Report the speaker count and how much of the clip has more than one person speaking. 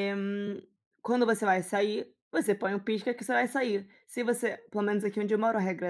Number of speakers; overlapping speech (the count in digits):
1, no overlap